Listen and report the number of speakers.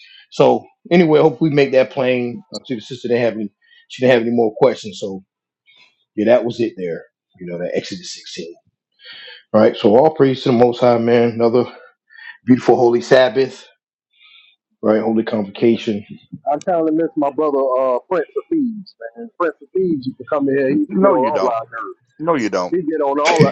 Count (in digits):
3